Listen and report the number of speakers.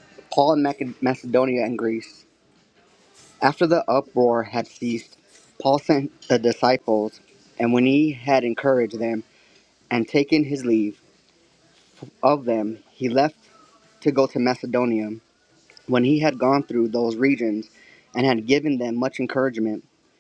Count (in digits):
1